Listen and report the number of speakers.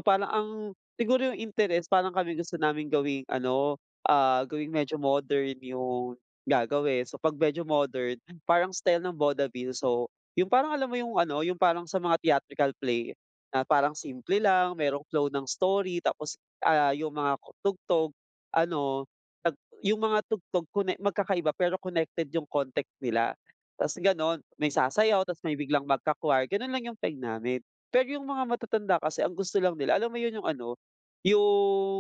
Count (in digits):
1